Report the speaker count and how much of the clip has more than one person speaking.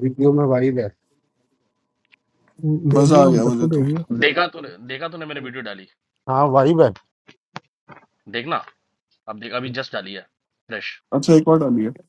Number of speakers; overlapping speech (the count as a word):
four, about 8%